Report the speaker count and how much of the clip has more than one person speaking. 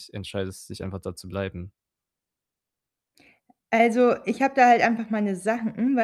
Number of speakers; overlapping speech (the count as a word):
two, no overlap